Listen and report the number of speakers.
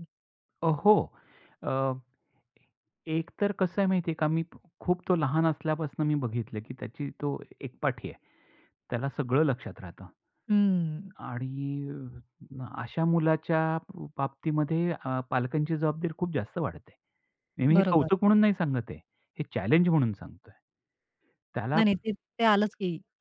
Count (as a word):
two